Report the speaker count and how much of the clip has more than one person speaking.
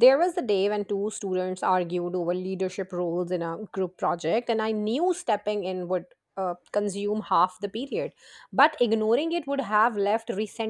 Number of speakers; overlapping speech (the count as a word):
one, no overlap